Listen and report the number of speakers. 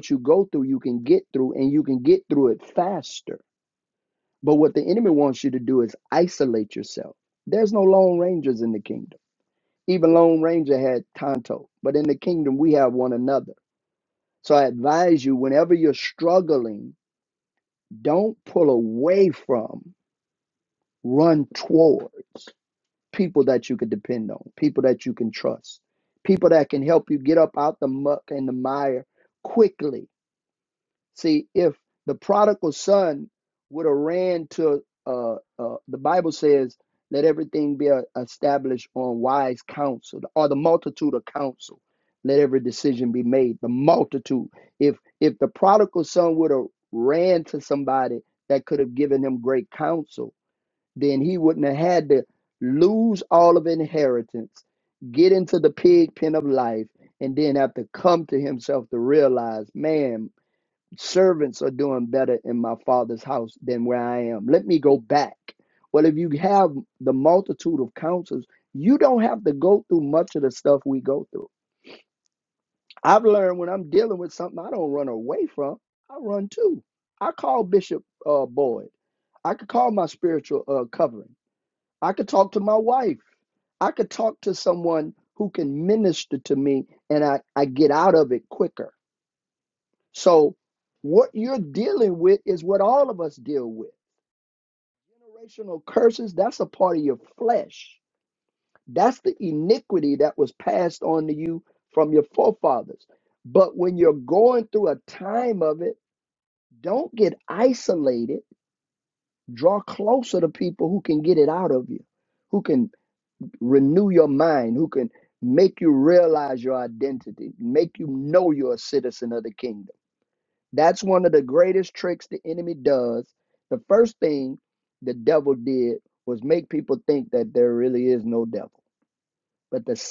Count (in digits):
1